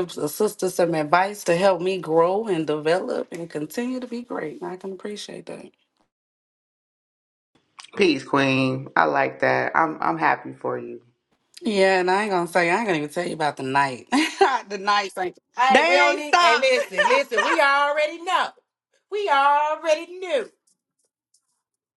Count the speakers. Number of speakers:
3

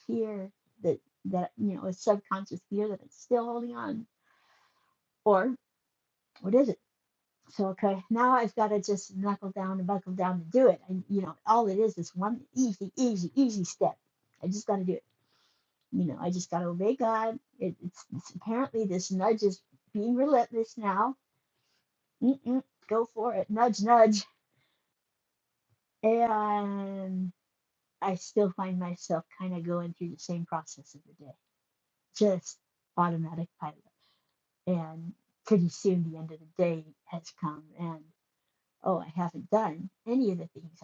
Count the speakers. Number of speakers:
1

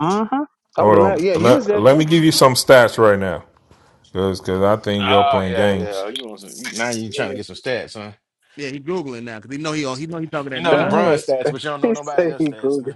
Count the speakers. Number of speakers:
4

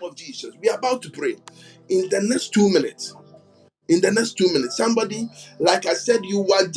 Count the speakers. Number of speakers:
1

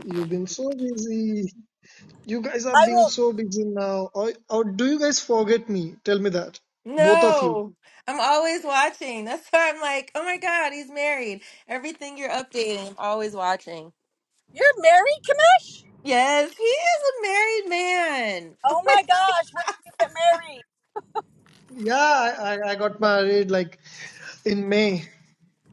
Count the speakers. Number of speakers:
3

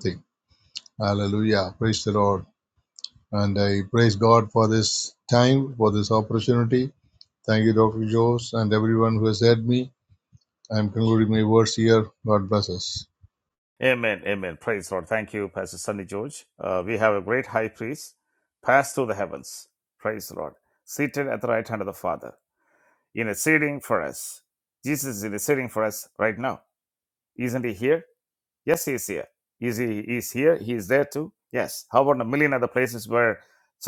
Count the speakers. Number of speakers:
2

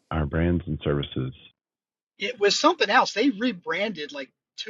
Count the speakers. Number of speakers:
2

